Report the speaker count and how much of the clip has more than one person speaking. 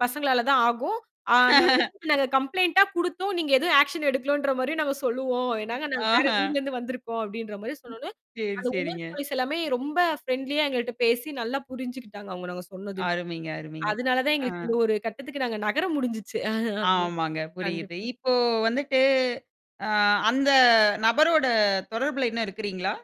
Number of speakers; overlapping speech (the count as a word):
two, about 7%